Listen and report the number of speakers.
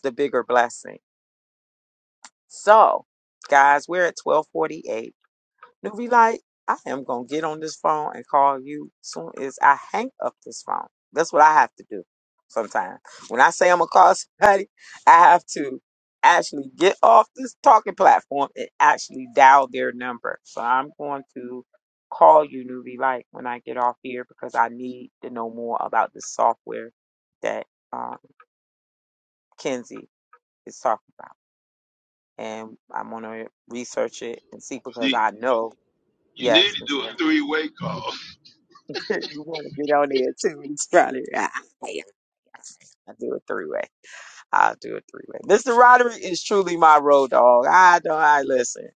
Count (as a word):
two